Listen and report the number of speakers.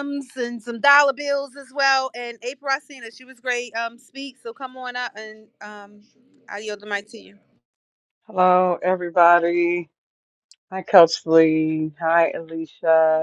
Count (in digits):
2